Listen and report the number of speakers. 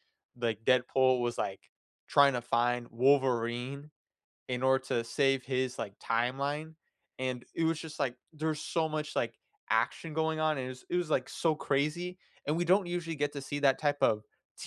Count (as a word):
one